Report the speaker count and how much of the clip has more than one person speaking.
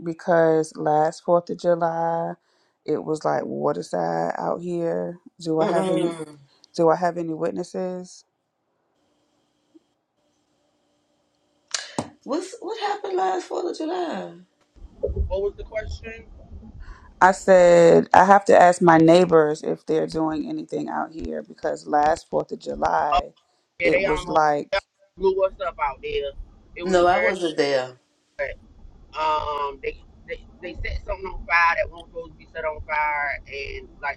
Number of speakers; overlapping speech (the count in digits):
3, about 5%